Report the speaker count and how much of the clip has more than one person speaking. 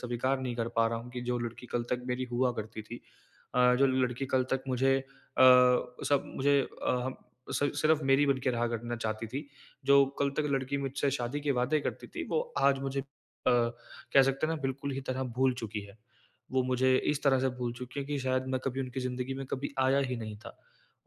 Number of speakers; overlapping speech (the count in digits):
1, no overlap